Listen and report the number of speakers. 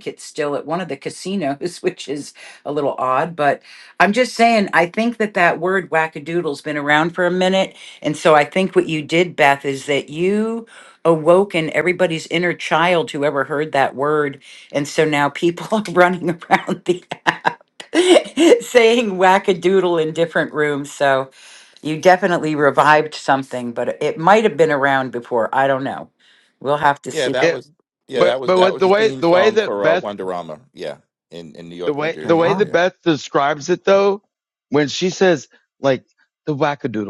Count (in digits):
3